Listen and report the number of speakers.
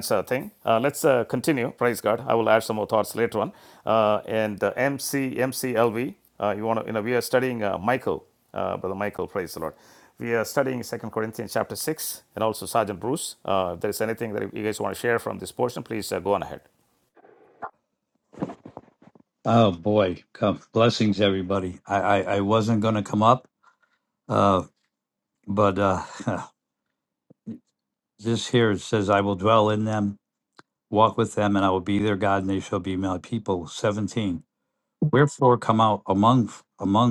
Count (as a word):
two